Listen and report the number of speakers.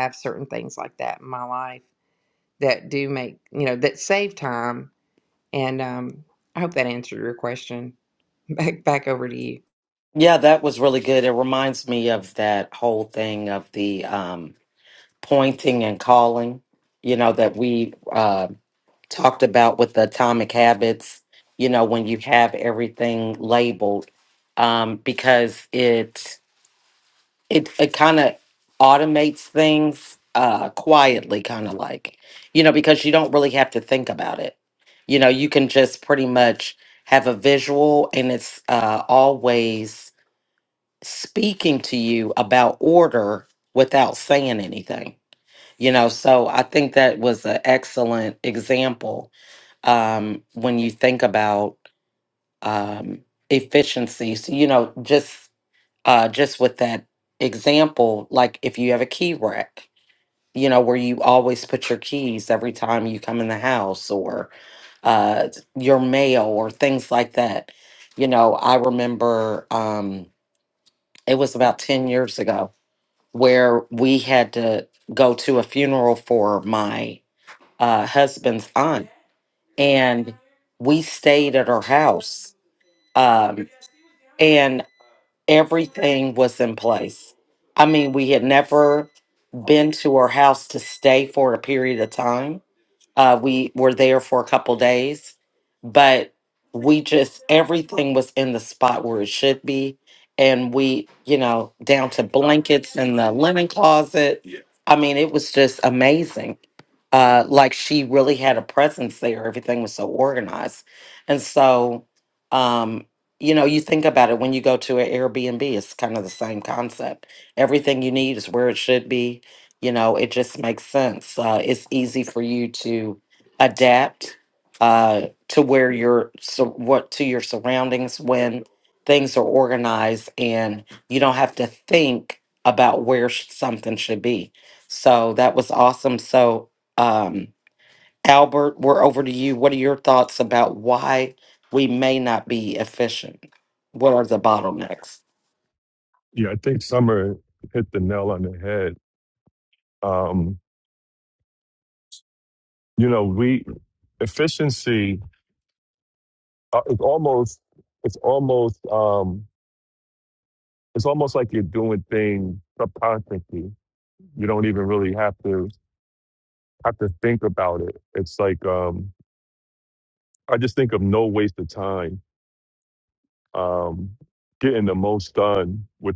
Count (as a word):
three